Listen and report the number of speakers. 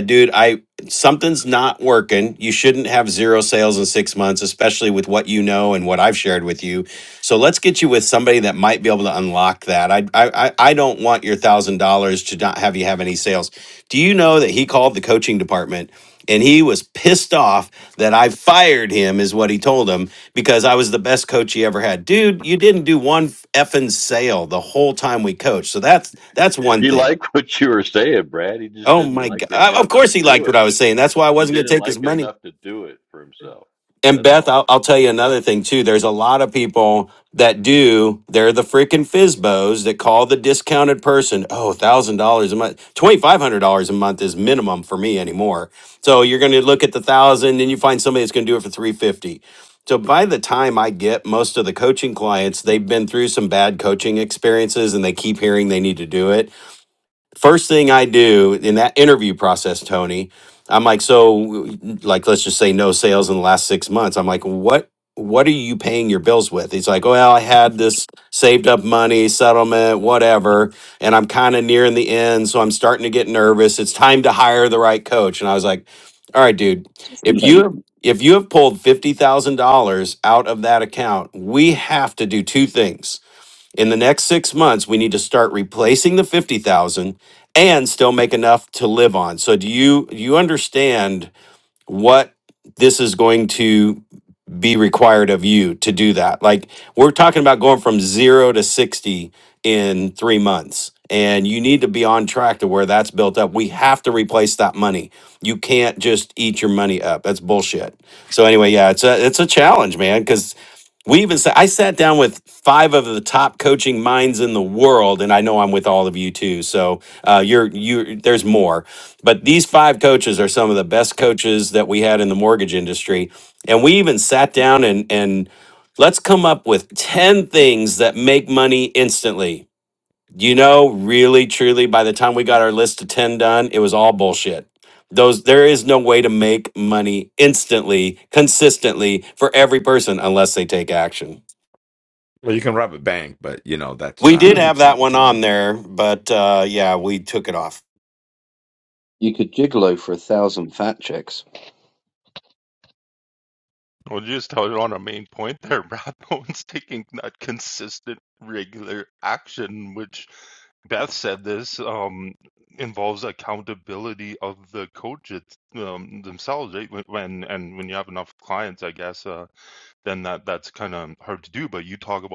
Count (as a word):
five